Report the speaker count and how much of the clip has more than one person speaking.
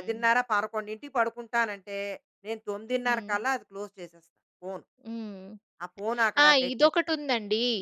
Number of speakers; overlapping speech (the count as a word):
two, about 12%